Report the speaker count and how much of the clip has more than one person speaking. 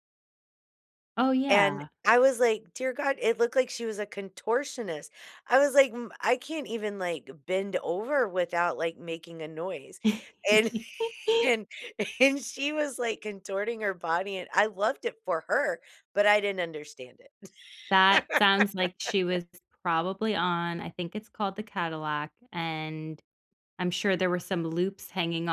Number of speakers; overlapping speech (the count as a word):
two, about 1%